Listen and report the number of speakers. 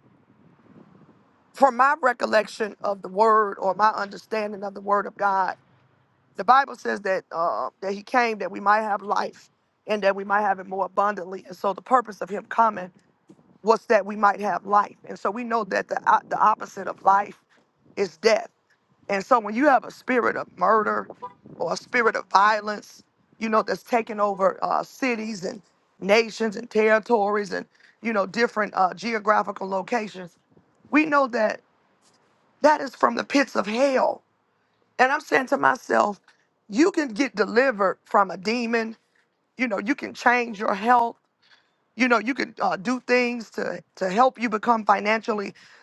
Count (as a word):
one